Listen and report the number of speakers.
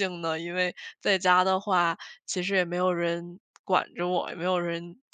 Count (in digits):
1